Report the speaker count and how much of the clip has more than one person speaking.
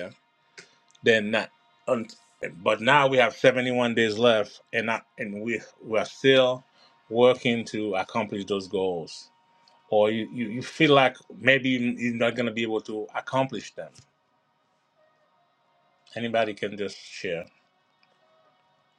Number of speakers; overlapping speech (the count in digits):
1, no overlap